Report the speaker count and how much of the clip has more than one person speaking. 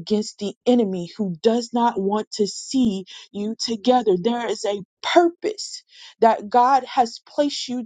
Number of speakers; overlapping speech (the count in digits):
1, no overlap